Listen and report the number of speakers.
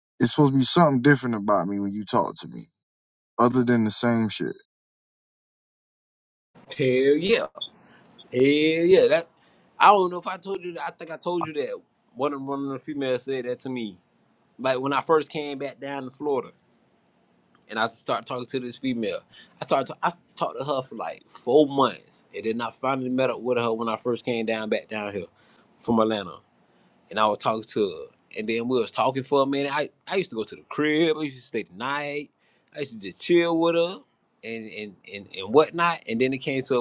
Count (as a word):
two